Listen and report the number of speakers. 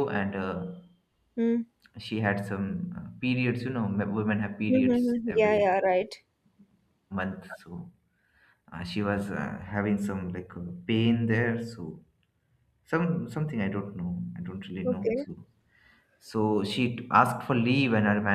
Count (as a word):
two